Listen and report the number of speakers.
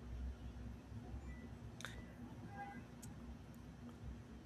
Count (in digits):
0